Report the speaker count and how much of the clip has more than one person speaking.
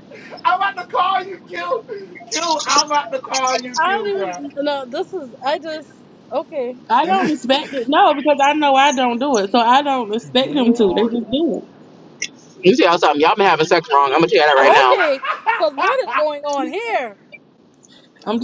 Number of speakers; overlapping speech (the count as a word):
four, about 10%